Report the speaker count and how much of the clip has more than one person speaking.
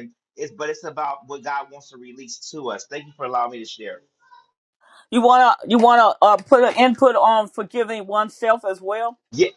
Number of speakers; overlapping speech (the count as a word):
two, no overlap